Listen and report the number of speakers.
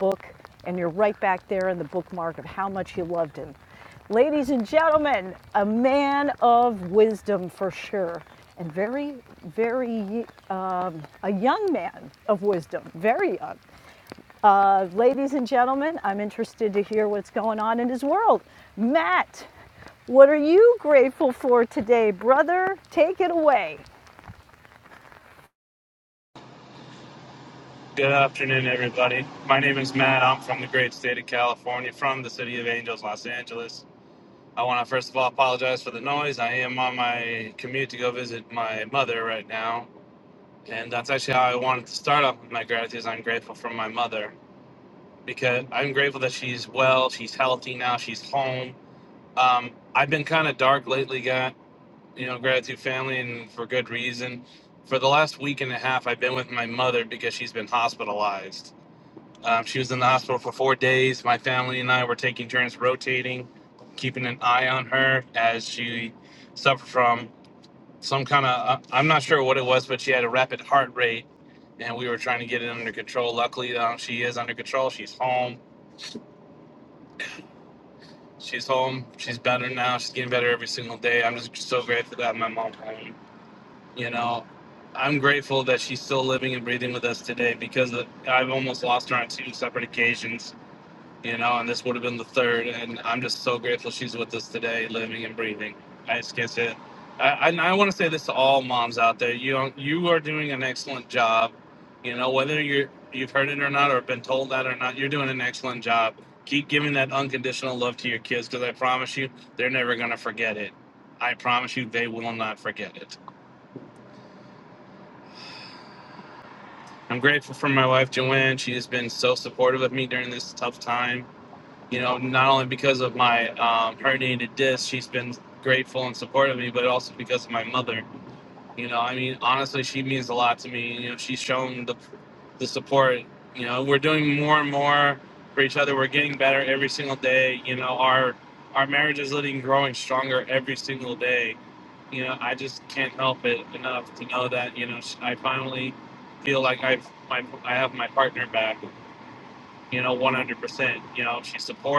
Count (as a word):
two